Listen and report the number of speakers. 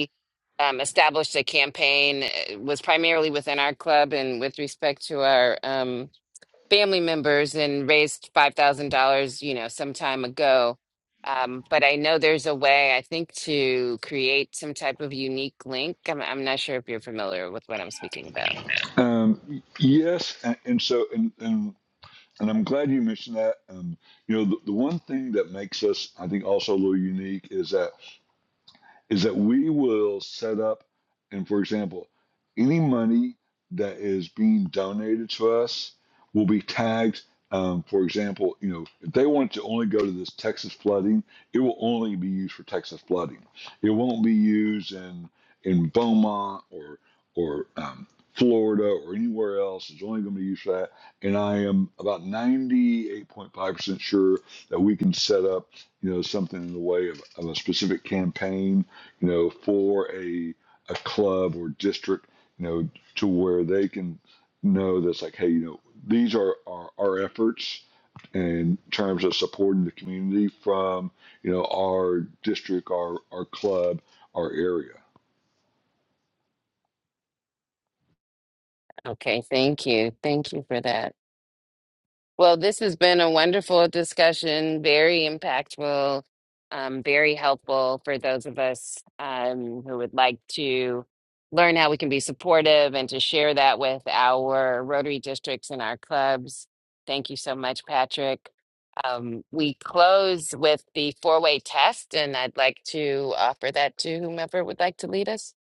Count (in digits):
2